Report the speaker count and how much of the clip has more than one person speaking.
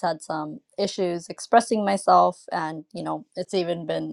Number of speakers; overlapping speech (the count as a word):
one, no overlap